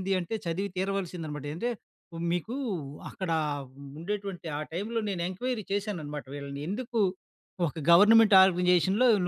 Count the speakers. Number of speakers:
1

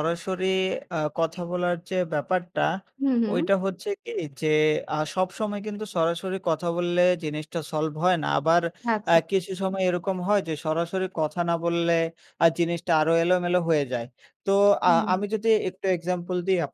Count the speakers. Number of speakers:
2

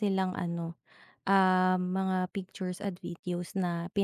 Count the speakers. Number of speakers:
1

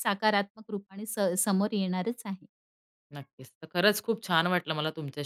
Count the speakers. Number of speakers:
2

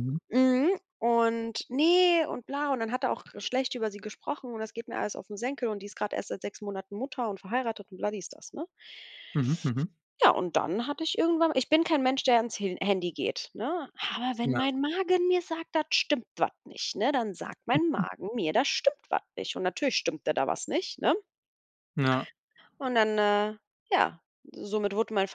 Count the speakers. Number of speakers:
2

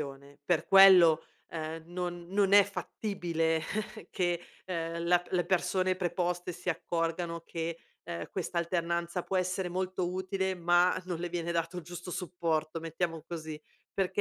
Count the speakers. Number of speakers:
1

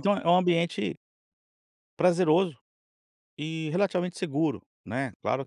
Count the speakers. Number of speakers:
1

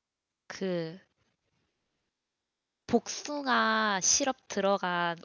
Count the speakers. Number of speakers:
1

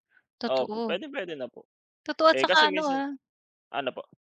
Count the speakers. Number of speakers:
2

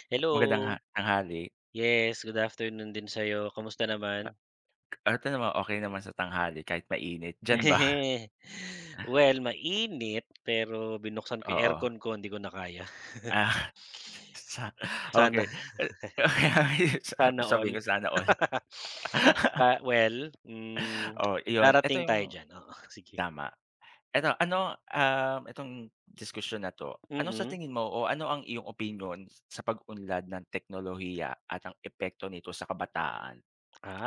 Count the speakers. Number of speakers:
2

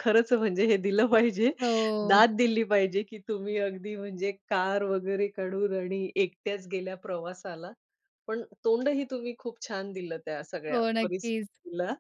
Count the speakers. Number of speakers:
2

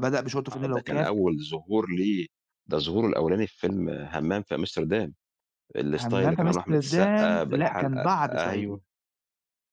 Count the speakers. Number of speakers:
2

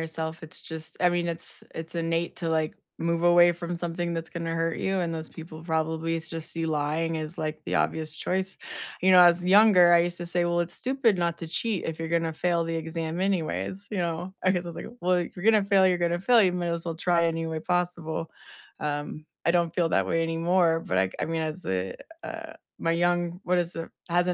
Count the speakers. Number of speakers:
1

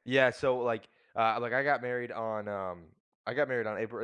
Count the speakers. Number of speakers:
1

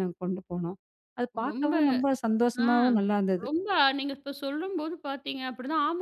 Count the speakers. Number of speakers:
2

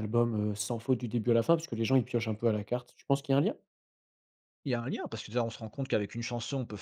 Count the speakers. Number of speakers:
2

